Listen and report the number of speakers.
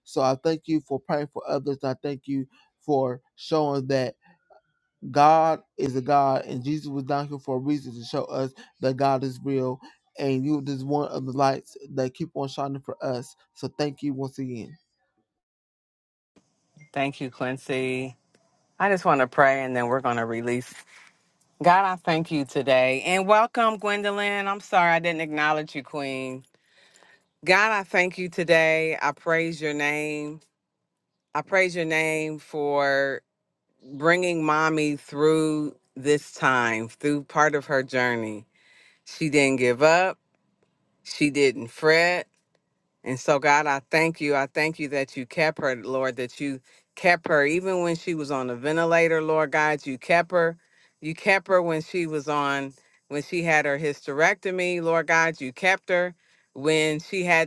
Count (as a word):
two